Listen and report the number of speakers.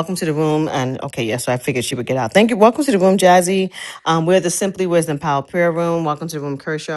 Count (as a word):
one